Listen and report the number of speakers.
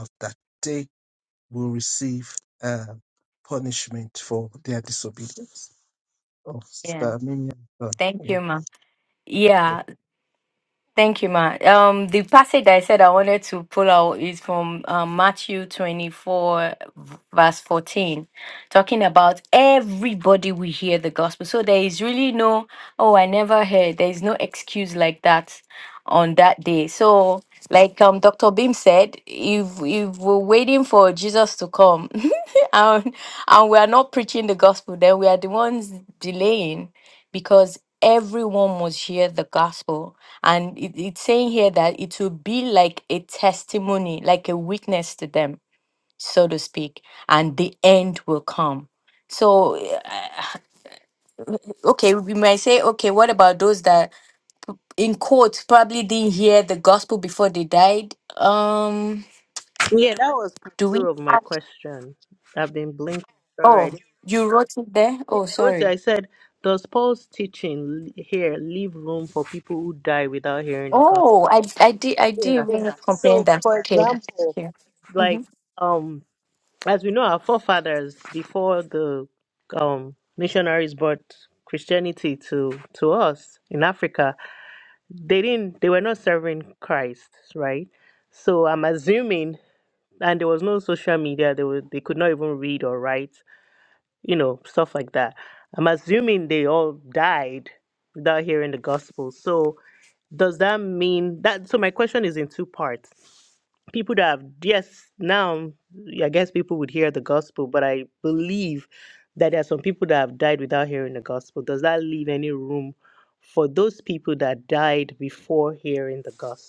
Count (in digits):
3